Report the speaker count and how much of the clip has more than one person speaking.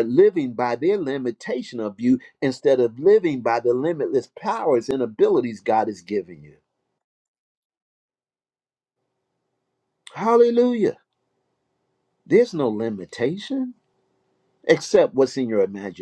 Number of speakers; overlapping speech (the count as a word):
one, no overlap